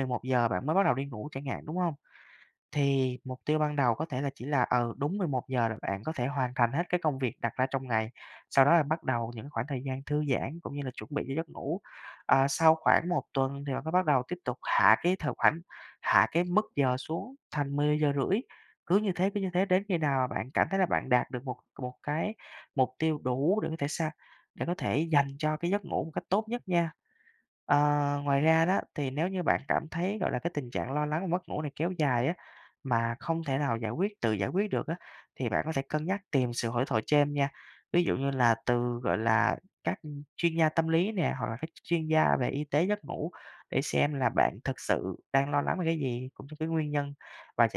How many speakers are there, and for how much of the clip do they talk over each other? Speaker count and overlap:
1, no overlap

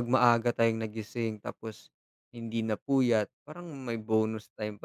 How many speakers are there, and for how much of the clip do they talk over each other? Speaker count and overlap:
1, no overlap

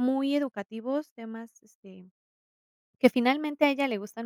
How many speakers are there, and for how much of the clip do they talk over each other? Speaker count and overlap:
1, no overlap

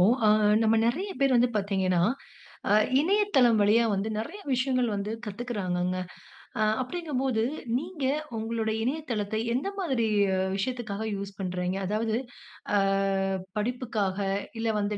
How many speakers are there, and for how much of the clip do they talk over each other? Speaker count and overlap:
1, no overlap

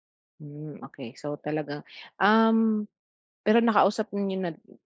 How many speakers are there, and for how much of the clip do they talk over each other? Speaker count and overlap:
1, no overlap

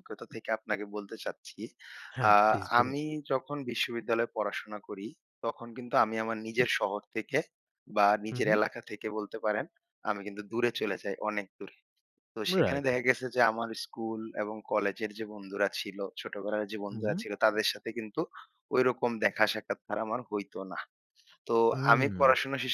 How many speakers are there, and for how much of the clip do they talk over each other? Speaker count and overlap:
2, about 8%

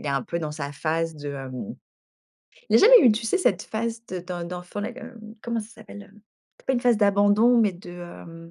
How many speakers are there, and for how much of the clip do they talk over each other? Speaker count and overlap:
1, no overlap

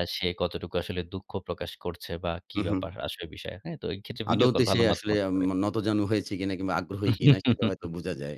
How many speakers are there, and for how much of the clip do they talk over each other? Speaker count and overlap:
2, about 18%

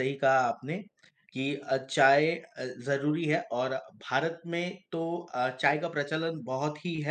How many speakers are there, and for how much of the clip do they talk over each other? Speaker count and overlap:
1, no overlap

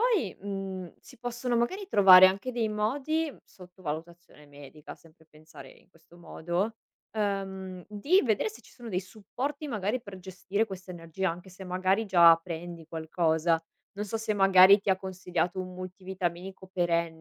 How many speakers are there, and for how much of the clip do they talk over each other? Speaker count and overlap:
1, no overlap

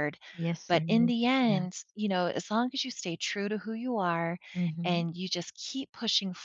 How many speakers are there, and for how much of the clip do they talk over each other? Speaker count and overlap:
2, about 12%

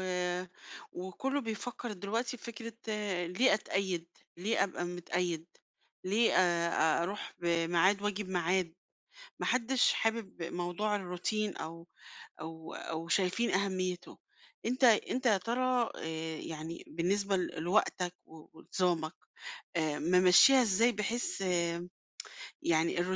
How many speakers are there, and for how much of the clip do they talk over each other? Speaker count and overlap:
1, no overlap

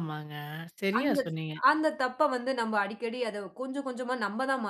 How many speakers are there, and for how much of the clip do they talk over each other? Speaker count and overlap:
2, about 6%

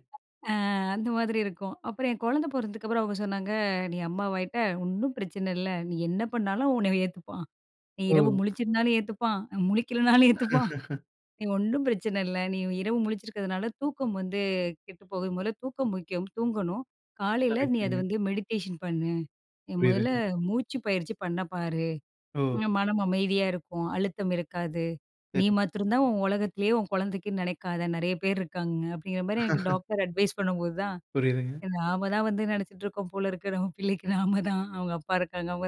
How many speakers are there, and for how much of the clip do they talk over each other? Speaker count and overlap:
2, about 4%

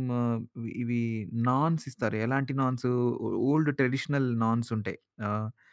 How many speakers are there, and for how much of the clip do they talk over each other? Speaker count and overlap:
1, no overlap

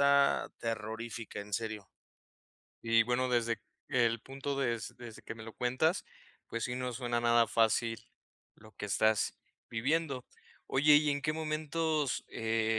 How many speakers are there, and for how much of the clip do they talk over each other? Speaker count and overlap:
2, no overlap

